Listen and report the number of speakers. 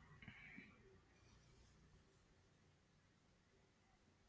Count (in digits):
0